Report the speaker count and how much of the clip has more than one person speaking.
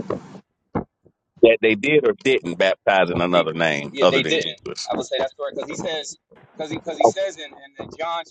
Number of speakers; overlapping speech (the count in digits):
2, about 16%